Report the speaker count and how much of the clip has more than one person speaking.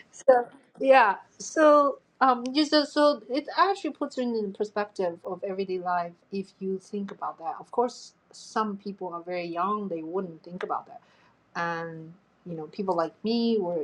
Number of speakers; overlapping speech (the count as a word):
one, no overlap